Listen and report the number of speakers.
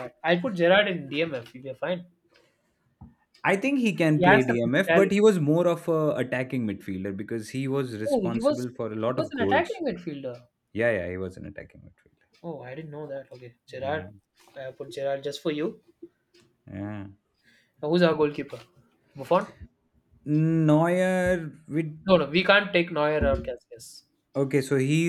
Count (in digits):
2